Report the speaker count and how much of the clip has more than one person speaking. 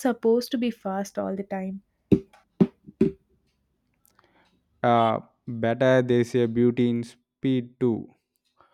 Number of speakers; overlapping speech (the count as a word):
two, no overlap